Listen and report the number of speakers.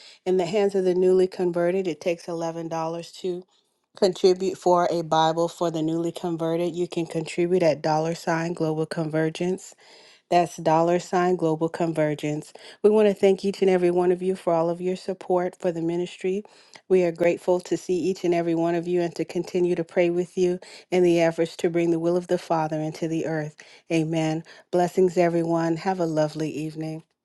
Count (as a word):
one